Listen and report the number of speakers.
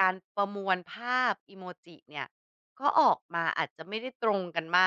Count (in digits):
1